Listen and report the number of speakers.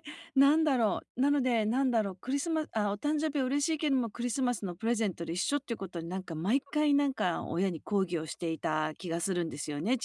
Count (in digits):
1